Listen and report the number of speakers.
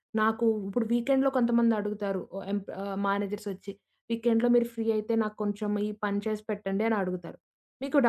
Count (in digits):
1